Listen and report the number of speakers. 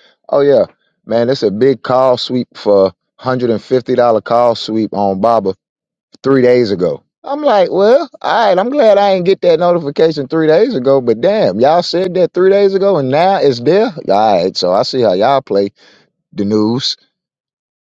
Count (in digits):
1